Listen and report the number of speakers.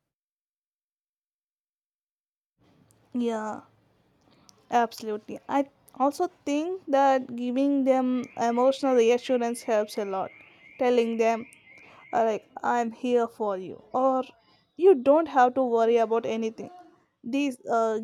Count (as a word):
one